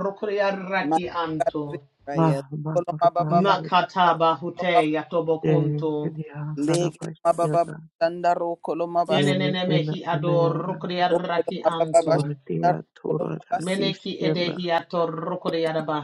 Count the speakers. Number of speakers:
three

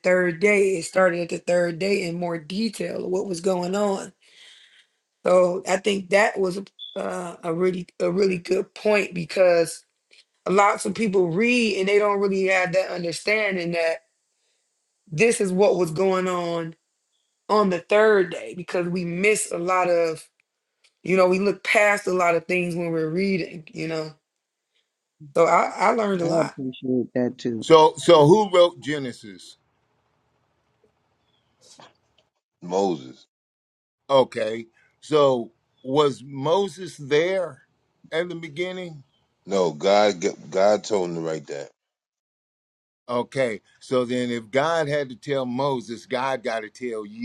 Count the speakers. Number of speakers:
four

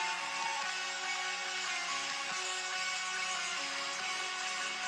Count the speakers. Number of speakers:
zero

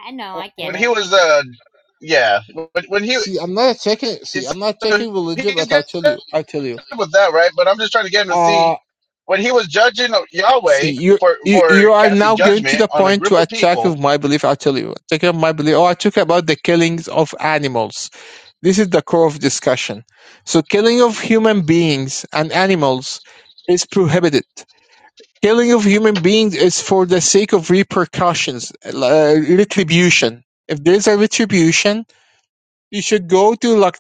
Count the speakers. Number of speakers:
three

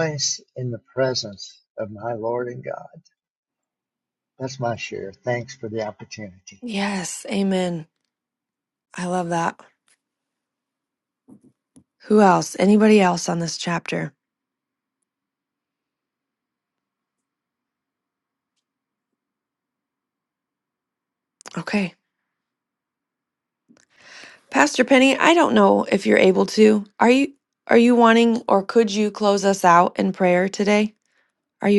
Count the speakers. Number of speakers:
two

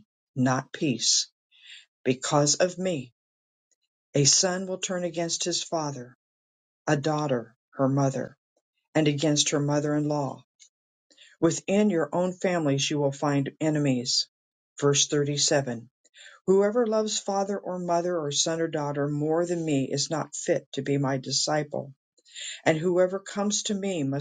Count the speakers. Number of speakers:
one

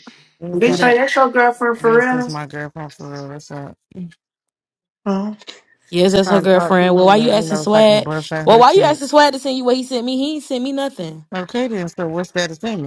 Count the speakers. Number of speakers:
three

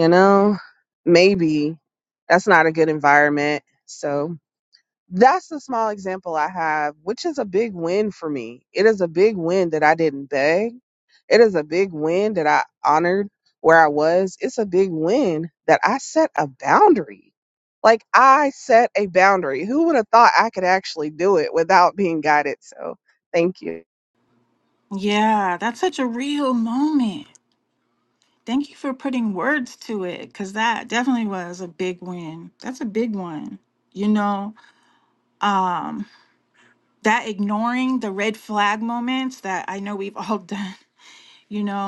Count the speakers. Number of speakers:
two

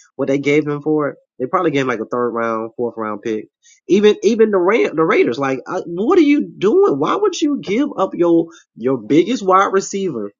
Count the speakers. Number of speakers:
one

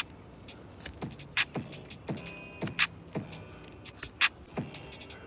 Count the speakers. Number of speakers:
zero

